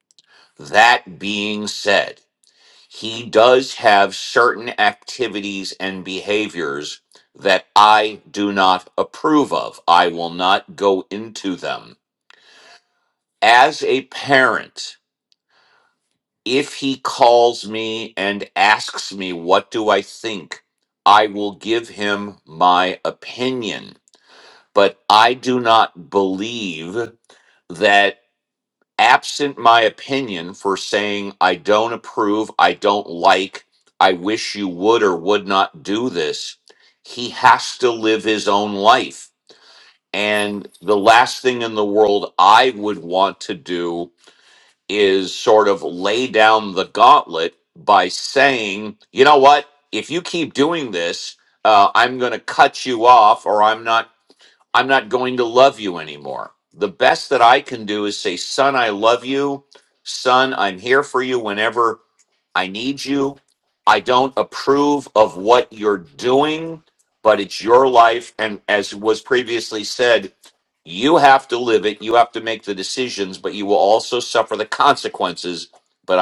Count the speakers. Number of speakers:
1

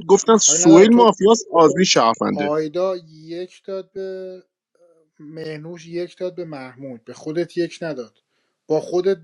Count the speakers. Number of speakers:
2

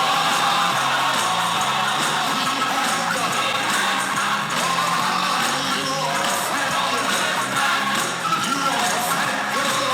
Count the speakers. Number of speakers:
0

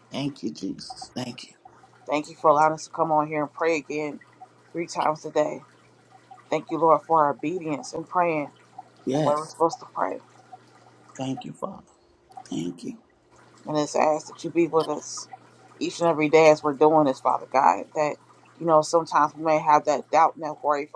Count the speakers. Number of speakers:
2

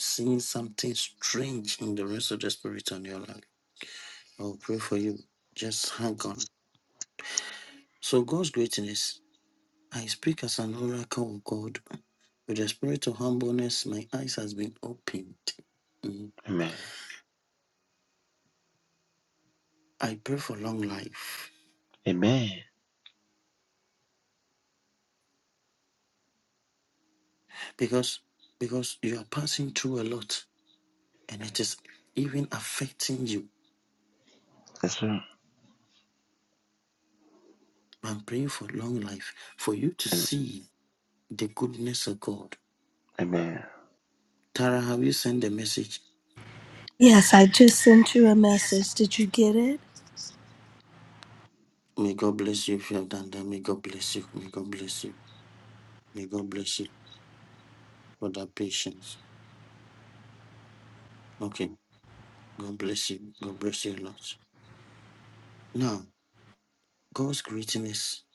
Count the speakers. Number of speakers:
3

